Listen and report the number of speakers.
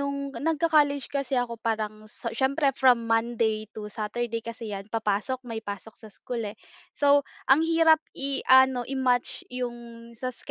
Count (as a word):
one